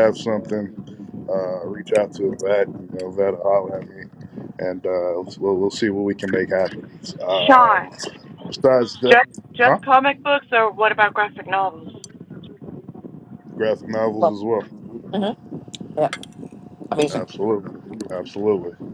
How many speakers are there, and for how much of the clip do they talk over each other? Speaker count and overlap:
three, about 7%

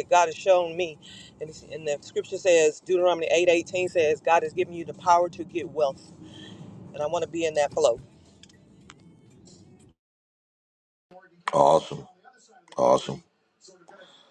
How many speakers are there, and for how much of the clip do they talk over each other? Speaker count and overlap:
two, no overlap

